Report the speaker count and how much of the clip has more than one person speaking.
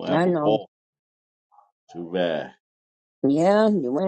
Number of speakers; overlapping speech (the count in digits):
2, about 13%